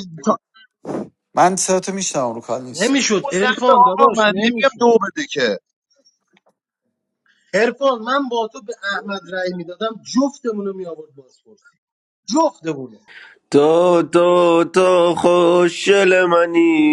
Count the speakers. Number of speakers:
4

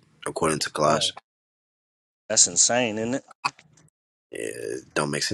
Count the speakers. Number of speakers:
2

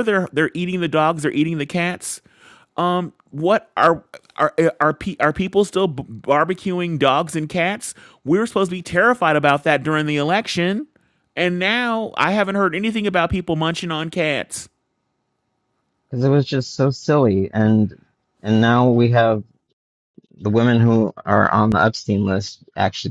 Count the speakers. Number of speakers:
2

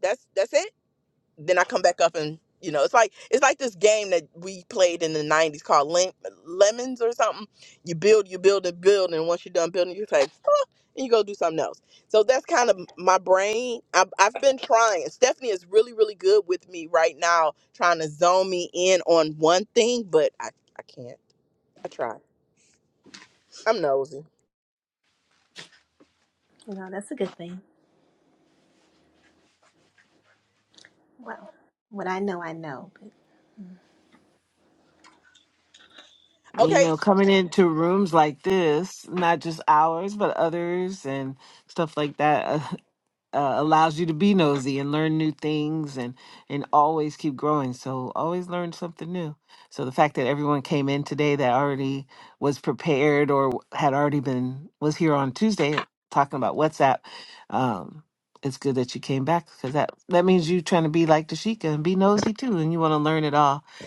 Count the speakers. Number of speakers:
3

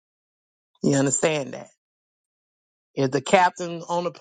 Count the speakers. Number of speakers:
1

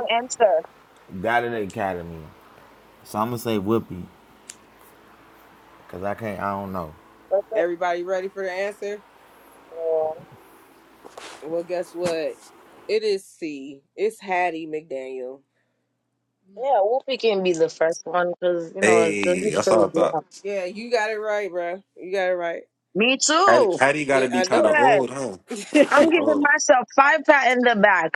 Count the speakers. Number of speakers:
4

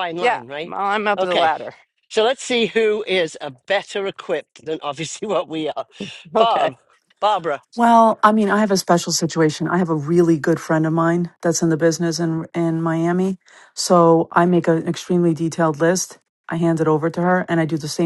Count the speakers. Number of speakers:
3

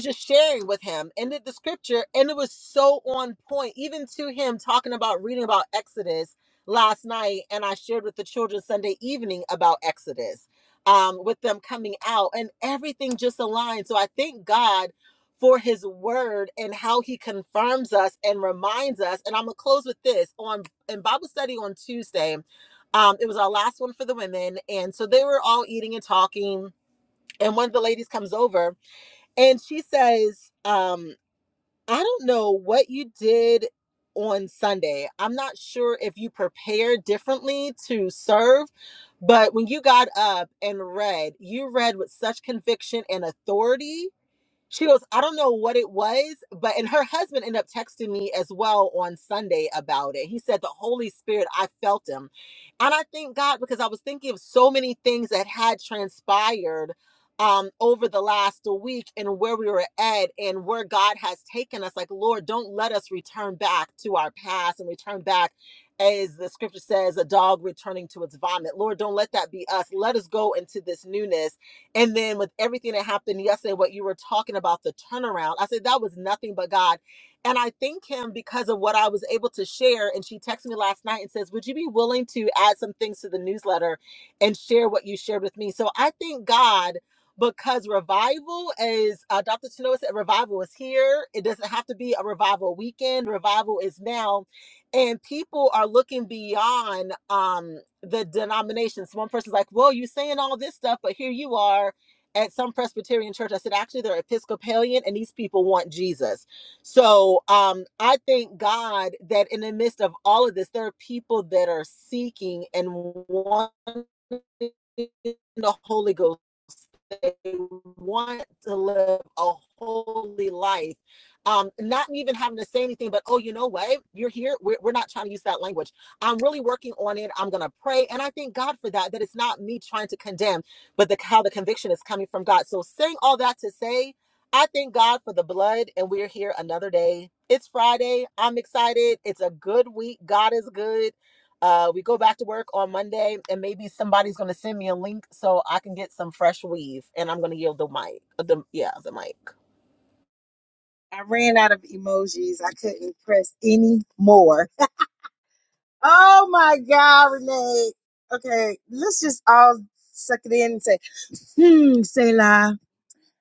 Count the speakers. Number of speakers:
2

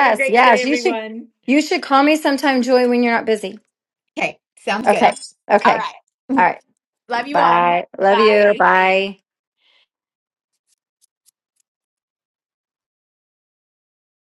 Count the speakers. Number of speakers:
2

